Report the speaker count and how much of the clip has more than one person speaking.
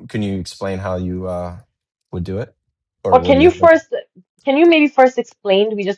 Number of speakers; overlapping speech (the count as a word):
two, about 10%